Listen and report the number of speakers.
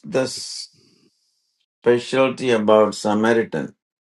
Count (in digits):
1